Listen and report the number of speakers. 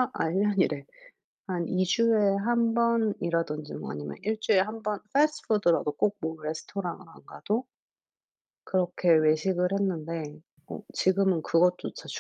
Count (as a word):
one